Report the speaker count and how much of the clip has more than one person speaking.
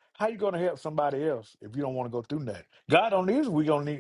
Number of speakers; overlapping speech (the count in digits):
1, no overlap